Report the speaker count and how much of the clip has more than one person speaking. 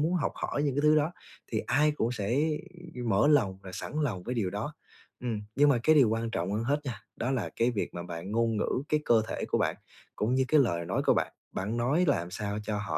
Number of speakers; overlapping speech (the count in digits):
1, no overlap